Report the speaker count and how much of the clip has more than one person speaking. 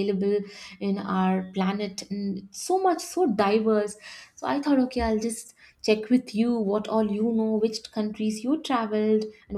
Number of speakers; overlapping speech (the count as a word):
one, no overlap